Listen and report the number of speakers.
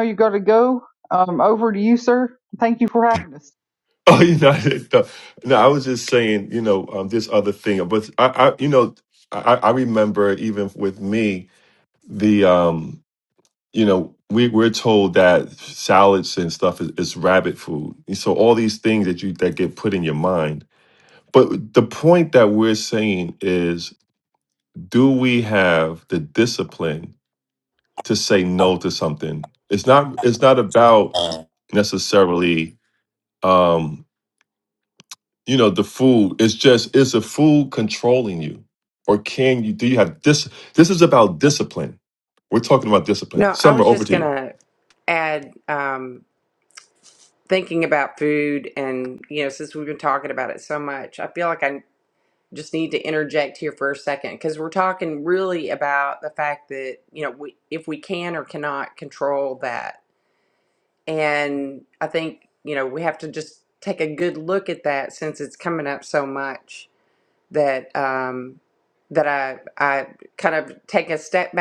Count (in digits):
3